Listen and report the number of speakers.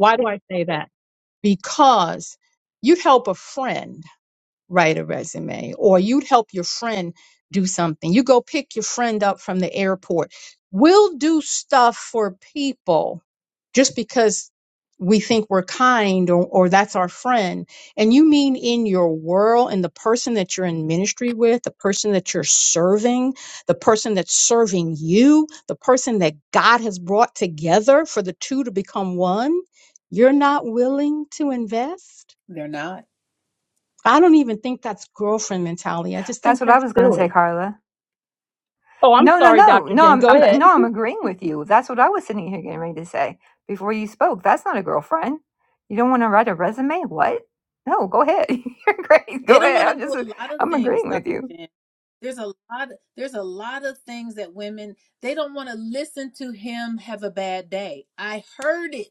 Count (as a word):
three